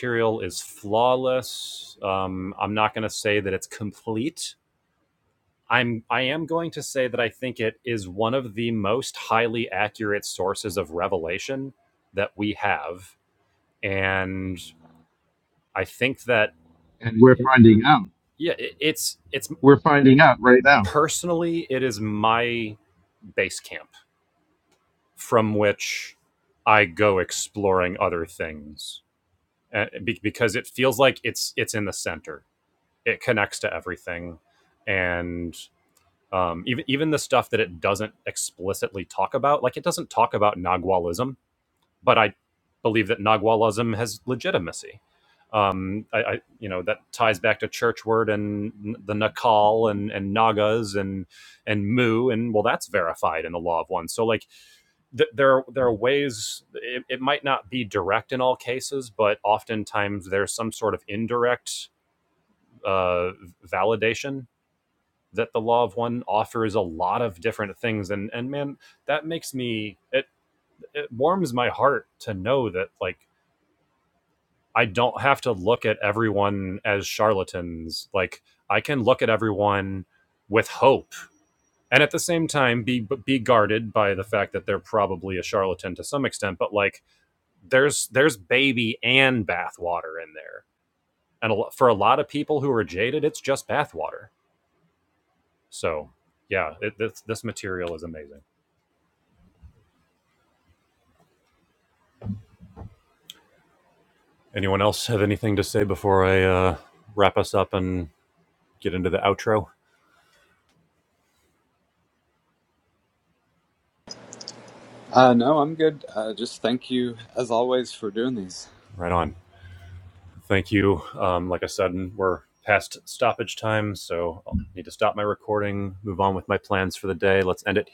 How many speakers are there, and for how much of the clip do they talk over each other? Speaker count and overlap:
3, under 1%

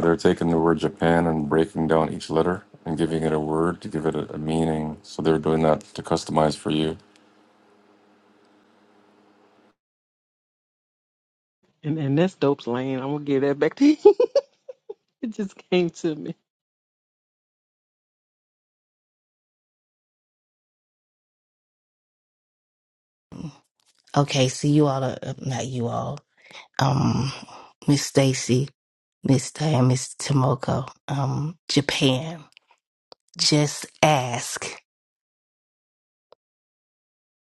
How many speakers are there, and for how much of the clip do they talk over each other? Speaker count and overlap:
3, no overlap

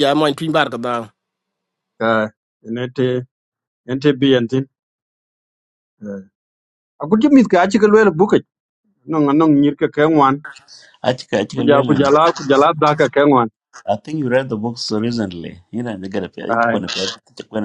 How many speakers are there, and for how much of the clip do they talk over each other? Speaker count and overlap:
3, about 5%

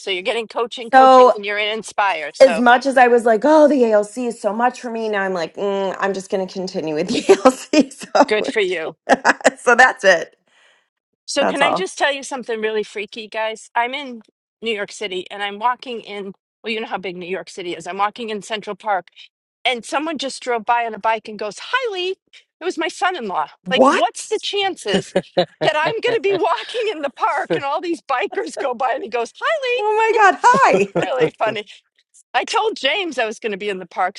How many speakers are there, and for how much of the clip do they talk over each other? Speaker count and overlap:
2, about 5%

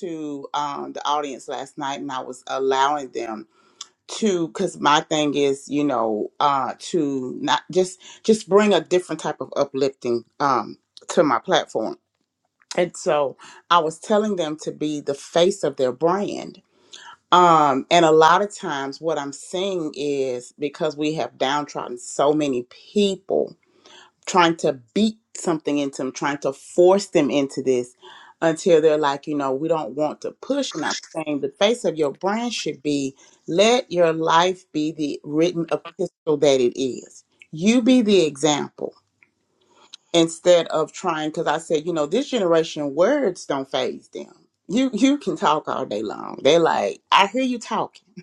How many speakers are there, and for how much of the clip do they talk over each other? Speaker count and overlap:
1, no overlap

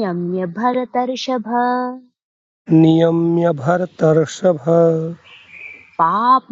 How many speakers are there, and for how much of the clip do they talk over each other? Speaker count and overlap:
2, no overlap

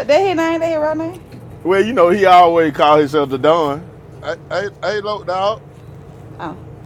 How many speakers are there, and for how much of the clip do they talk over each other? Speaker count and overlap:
3, no overlap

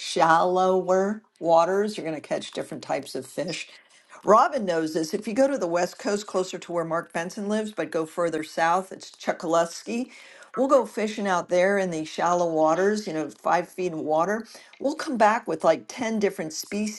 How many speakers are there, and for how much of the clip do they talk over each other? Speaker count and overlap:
1, no overlap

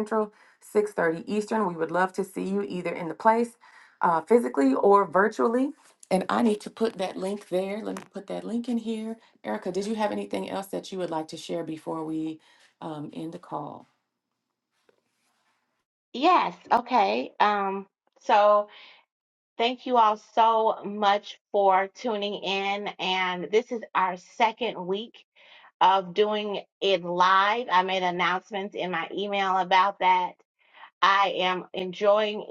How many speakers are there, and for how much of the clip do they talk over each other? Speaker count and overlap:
2, no overlap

